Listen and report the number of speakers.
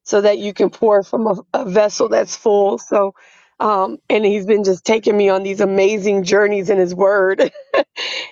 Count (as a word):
one